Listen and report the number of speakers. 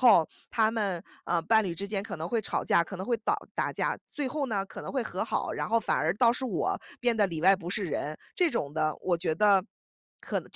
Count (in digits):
1